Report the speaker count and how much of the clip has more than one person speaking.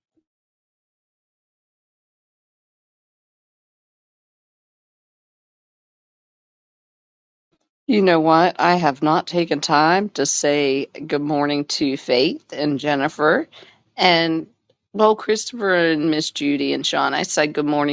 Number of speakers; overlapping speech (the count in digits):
1, no overlap